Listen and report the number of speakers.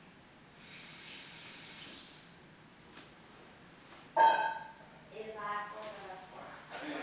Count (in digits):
1